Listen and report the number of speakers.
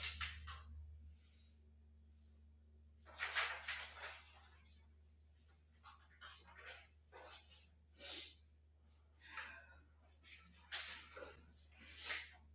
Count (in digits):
0